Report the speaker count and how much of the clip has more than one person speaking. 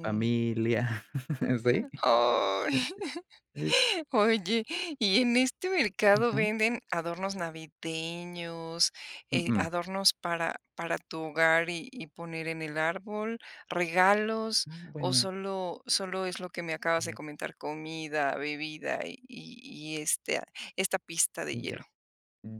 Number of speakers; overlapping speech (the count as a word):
two, about 8%